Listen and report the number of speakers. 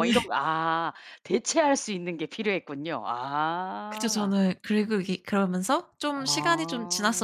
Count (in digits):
2